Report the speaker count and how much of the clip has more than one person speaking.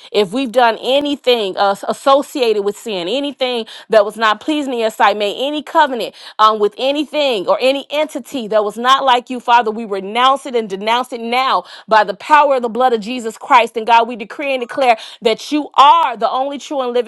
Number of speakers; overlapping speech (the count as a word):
one, no overlap